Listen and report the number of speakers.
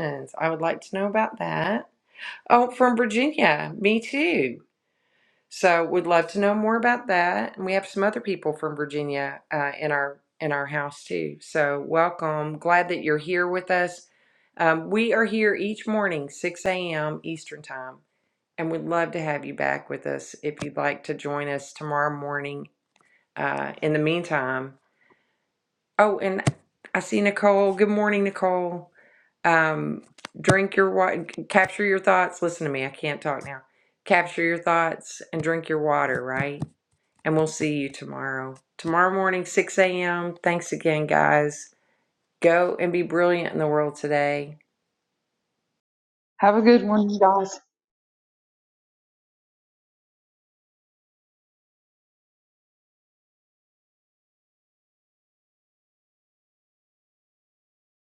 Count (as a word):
two